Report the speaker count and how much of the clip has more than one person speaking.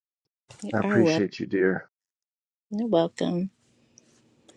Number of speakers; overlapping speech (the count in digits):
2, about 9%